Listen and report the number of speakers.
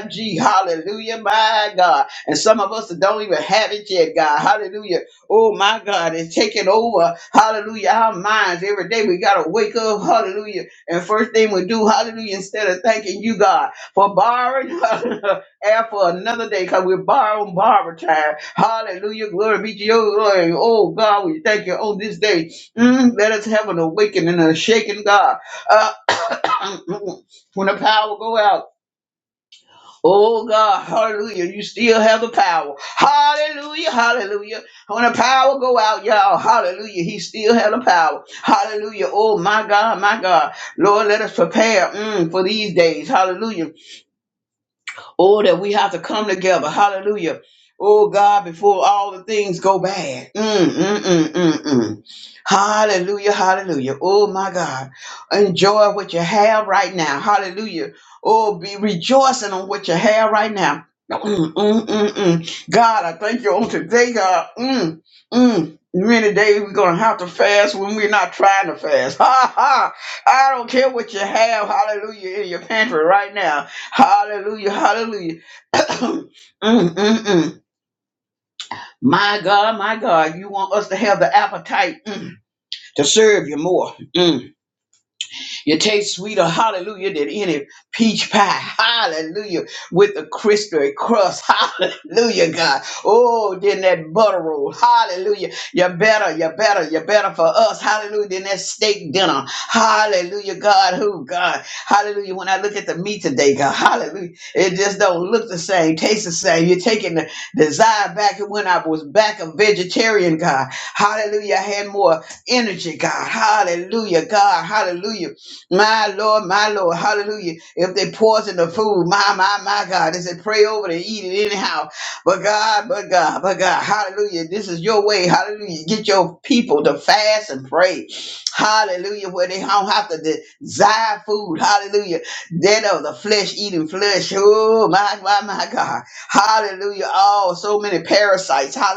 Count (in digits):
1